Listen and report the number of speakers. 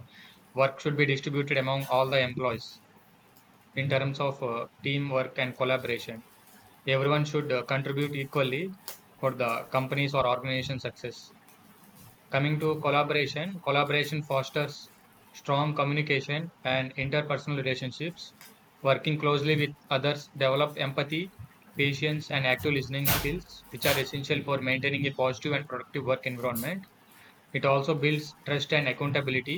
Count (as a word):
one